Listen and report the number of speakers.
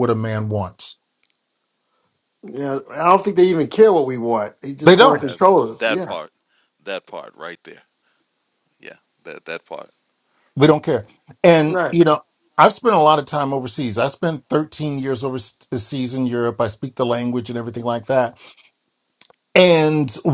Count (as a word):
three